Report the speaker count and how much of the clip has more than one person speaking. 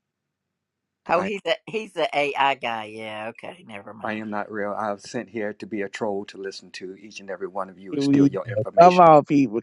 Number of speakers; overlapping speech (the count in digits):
3, about 15%